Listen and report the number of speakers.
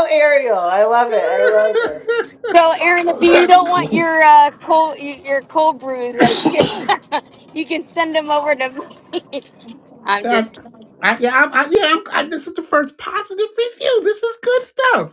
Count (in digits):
3